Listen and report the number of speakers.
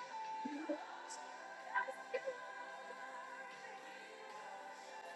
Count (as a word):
zero